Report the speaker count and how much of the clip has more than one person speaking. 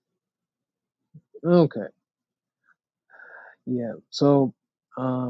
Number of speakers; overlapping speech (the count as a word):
one, no overlap